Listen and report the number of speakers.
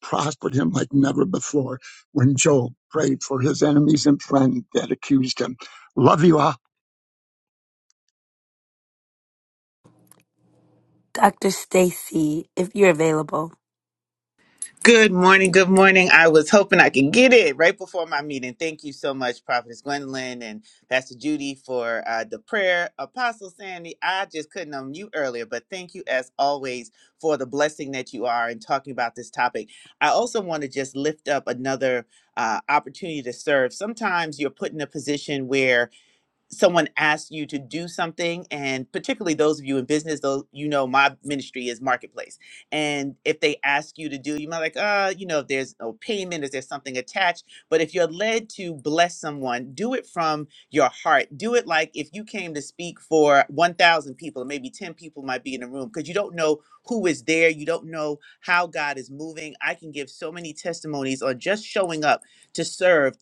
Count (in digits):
3